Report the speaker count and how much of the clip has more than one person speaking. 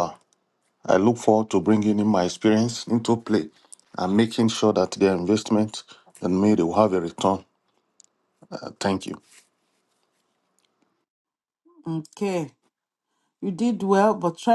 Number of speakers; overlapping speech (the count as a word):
two, no overlap